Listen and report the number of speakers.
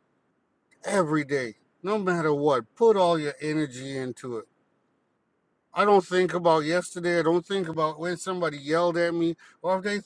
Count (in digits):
1